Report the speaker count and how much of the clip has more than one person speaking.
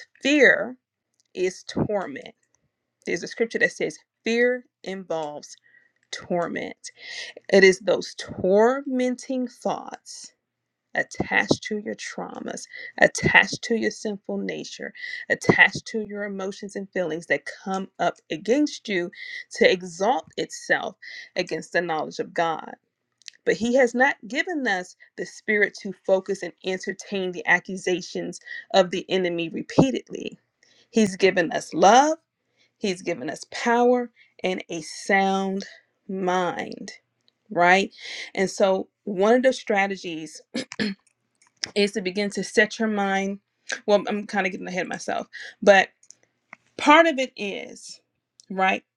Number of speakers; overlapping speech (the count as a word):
one, no overlap